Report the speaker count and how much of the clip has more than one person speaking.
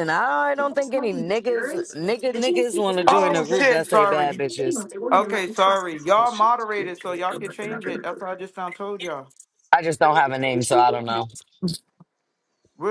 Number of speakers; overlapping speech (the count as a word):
two, about 11%